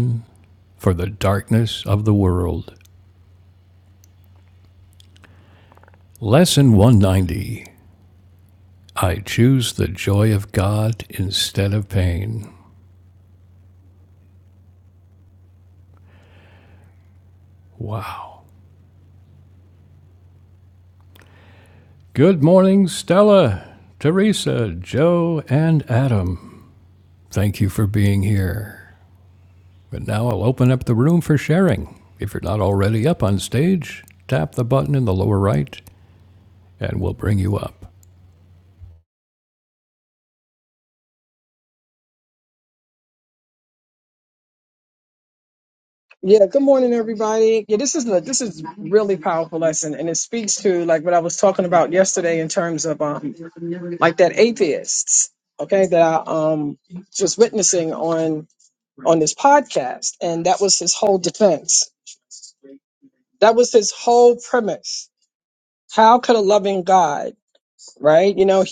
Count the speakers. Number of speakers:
2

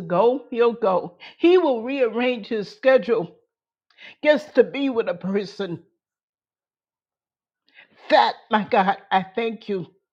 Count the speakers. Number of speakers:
1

